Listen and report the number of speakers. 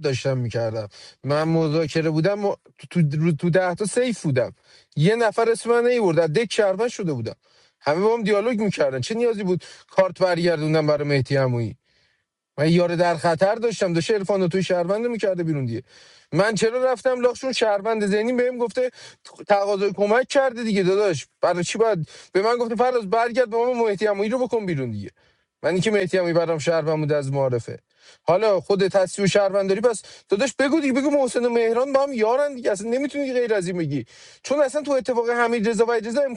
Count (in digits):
1